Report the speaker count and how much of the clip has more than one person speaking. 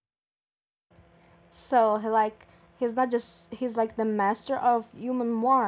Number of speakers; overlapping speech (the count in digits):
1, no overlap